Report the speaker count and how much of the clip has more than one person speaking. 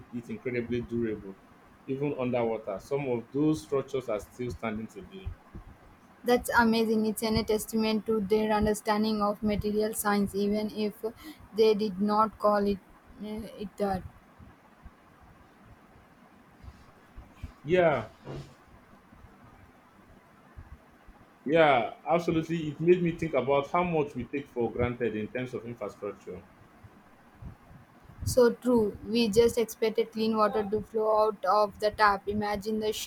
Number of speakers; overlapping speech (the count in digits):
2, no overlap